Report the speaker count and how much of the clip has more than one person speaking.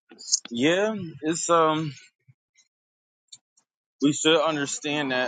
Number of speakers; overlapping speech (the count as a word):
one, no overlap